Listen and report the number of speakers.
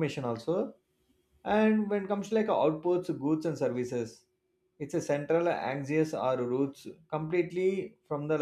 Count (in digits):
1